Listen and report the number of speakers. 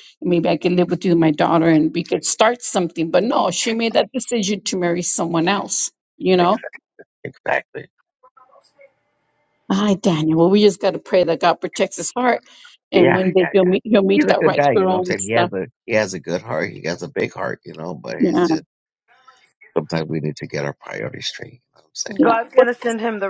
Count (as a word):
three